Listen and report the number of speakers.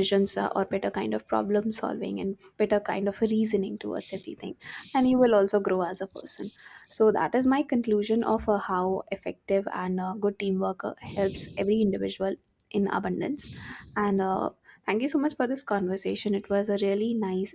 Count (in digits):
1